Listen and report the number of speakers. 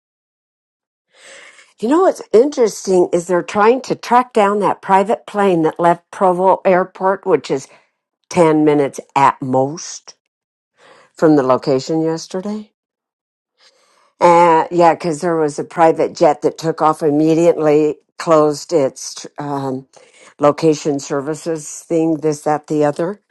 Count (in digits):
1